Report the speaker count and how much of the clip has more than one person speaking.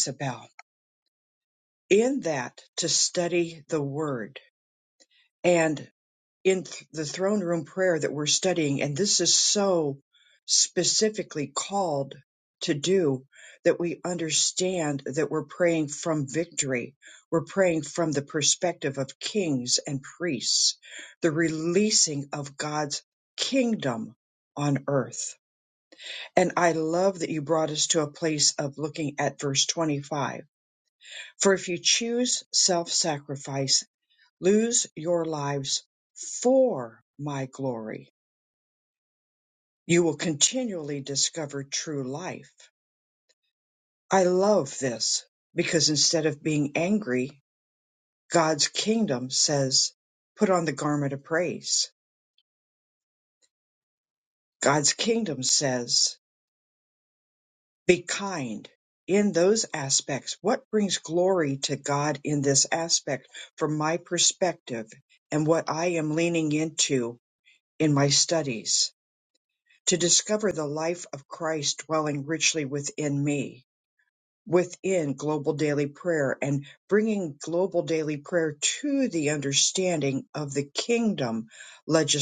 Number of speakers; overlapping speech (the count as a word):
one, no overlap